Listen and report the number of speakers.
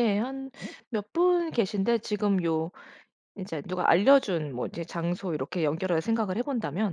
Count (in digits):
1